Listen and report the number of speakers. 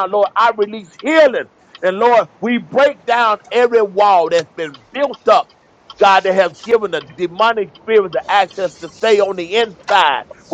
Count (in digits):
1